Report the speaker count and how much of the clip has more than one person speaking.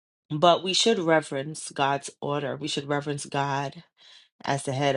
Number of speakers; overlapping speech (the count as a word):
one, no overlap